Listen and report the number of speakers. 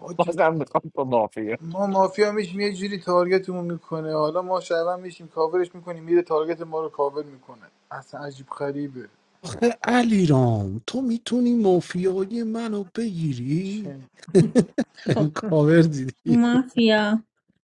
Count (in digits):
4